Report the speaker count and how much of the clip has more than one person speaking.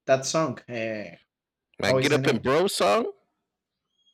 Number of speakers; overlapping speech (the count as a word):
two, about 13%